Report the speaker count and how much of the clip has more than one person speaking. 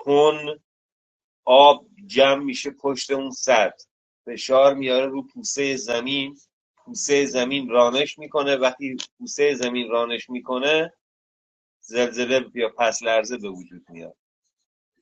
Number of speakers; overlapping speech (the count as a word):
one, no overlap